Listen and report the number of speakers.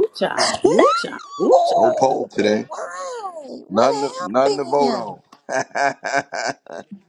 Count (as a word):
three